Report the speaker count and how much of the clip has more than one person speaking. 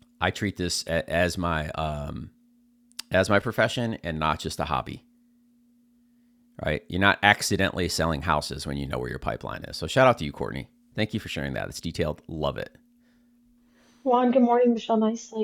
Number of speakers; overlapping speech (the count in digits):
2, no overlap